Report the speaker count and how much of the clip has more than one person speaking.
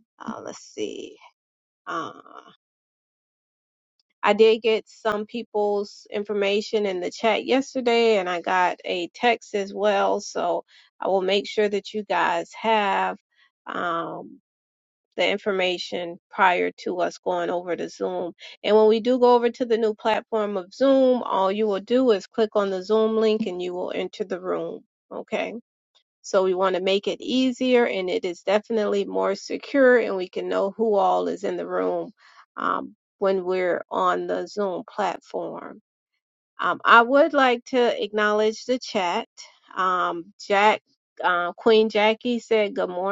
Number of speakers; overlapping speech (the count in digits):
1, no overlap